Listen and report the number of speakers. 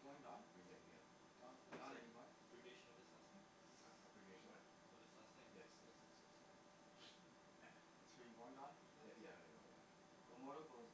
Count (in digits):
3